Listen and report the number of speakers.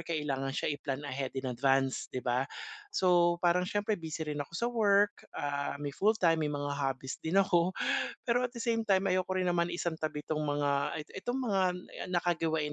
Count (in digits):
1